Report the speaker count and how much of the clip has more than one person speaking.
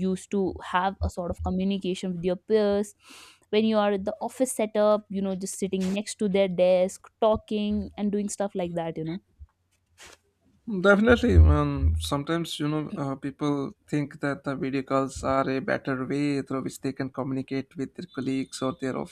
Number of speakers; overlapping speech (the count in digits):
2, no overlap